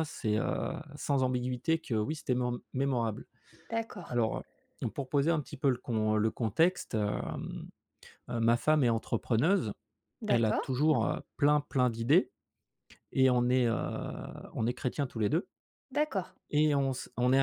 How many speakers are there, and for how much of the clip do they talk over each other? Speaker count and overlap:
2, about 4%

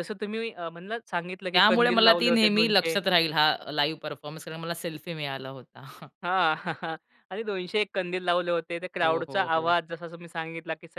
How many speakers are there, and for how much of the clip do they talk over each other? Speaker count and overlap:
2, about 19%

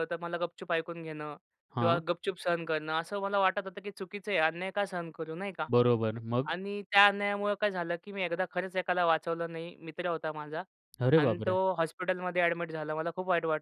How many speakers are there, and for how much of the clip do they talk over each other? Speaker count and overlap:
2, about 5%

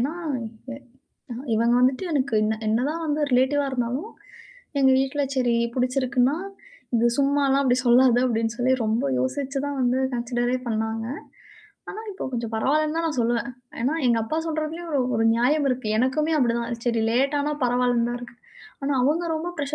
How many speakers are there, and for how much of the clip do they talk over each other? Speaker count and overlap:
1, no overlap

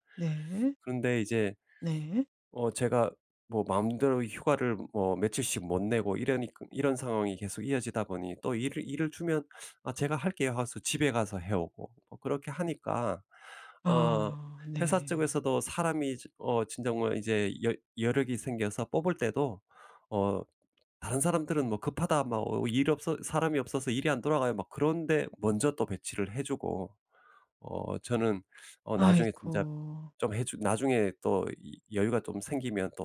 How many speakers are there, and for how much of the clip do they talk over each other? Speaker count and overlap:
2, about 4%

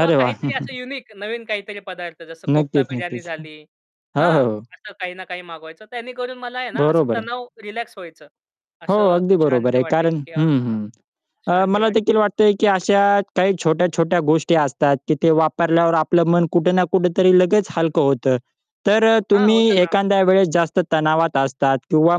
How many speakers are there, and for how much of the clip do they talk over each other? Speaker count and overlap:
2, about 24%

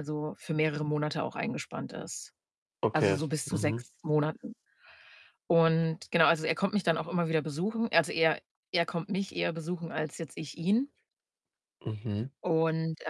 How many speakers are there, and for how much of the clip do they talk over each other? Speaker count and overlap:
2, about 7%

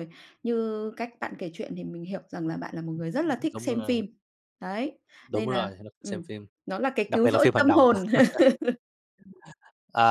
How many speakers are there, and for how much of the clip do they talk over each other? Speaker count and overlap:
2, about 18%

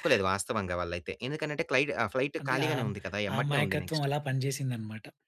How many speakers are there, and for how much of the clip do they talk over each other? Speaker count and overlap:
2, about 25%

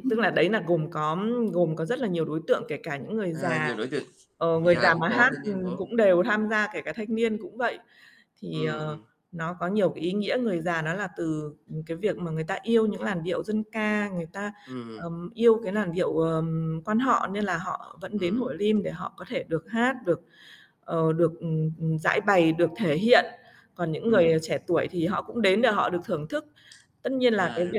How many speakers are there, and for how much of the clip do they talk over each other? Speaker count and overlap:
2, about 12%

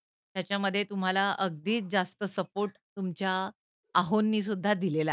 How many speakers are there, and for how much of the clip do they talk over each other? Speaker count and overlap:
1, no overlap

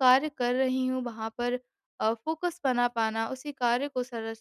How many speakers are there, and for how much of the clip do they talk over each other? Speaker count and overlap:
1, no overlap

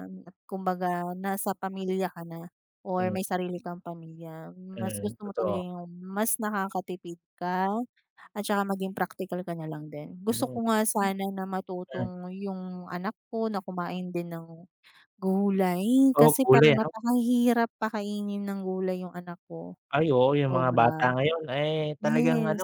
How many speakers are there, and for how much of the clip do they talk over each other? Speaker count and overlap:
2, about 16%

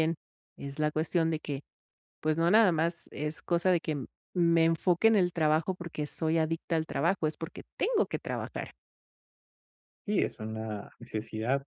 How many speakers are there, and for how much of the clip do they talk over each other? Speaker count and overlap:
2, no overlap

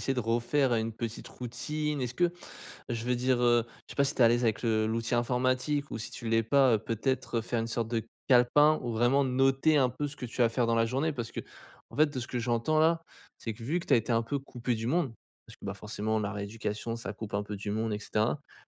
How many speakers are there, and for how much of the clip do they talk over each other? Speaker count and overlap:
1, no overlap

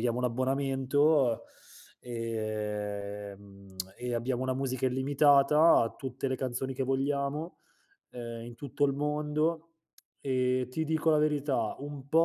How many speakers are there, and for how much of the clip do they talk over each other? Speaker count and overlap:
1, no overlap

